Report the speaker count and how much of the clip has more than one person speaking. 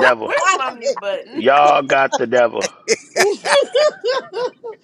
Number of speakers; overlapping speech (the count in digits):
3, about 10%